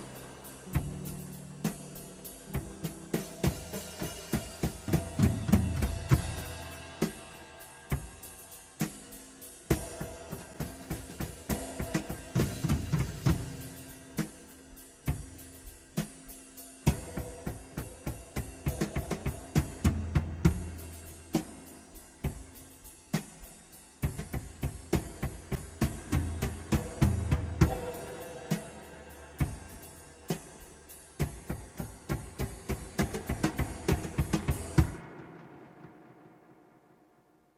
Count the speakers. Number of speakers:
0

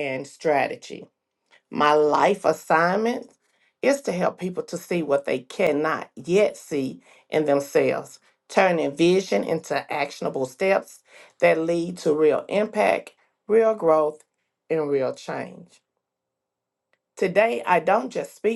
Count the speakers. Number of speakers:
1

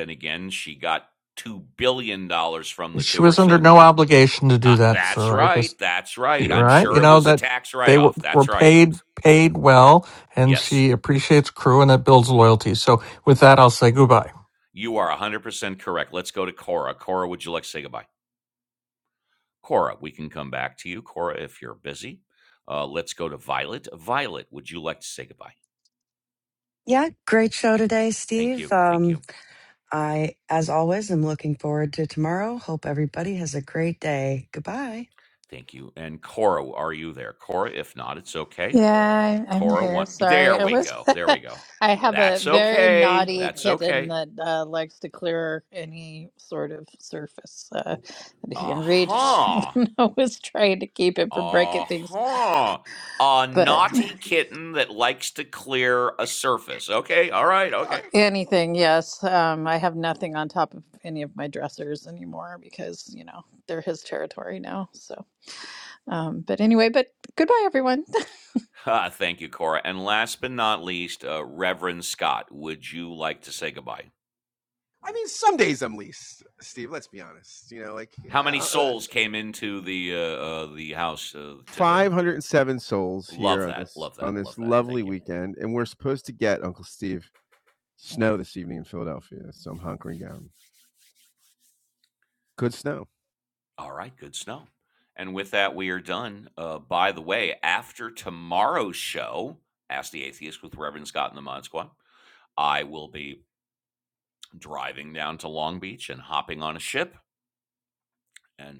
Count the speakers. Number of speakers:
5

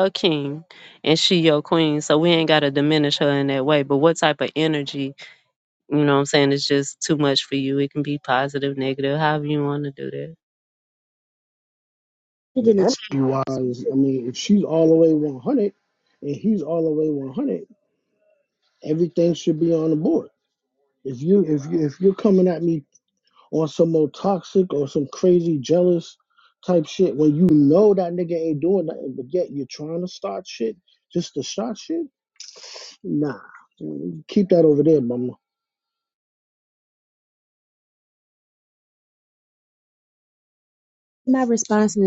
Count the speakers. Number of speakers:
3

